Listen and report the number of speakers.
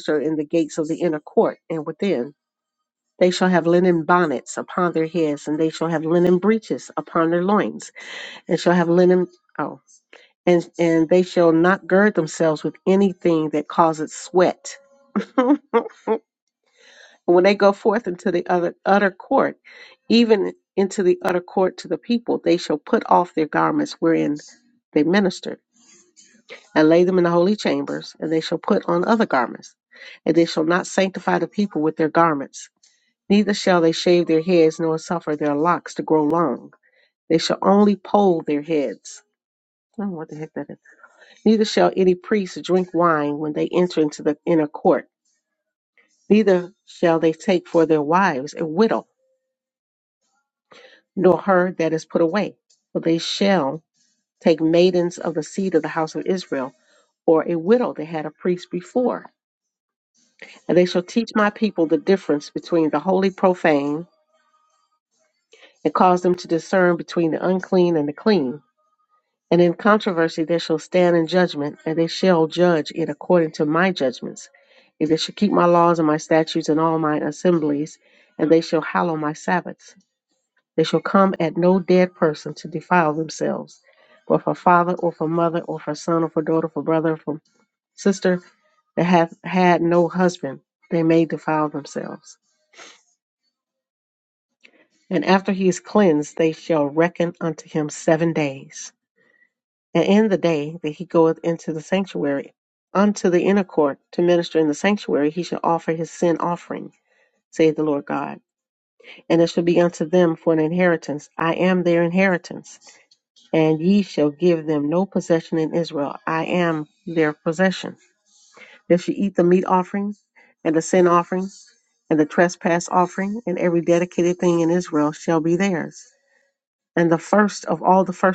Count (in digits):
1